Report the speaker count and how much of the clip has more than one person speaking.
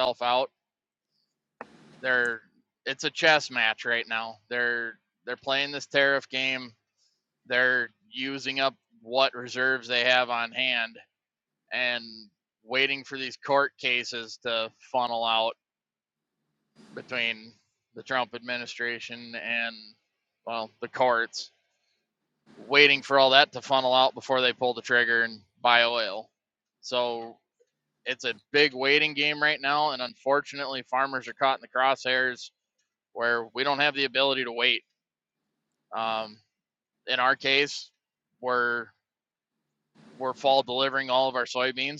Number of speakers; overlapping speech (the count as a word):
one, no overlap